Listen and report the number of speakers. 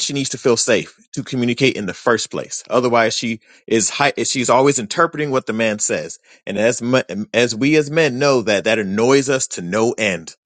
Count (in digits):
1